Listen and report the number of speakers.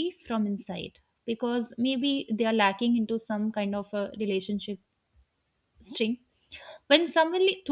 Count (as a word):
one